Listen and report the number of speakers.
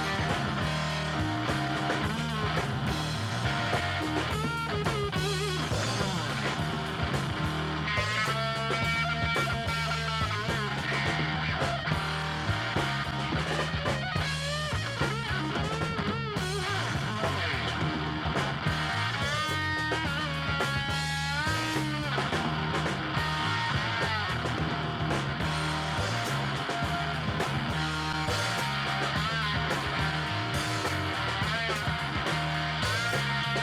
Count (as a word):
zero